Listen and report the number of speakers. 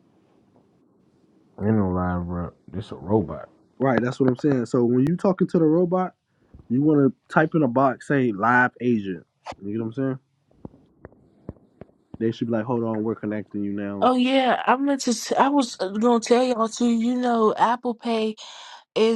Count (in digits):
3